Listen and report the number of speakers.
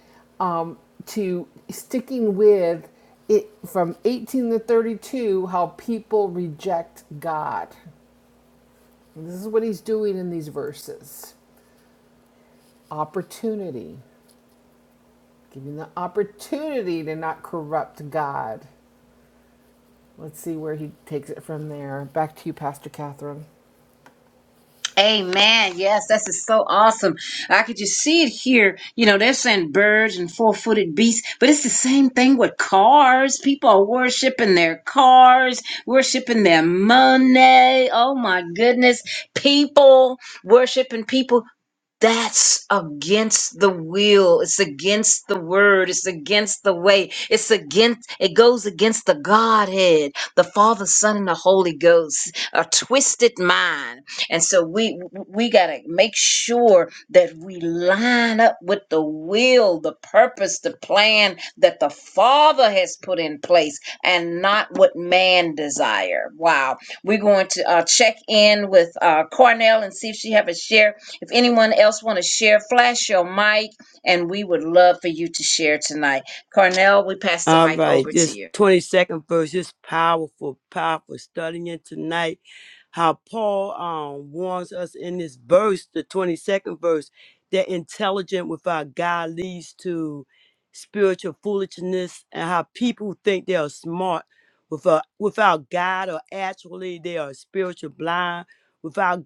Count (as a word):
three